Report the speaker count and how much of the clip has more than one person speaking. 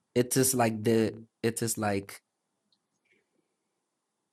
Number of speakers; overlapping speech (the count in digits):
1, no overlap